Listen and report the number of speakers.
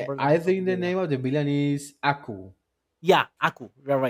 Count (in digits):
2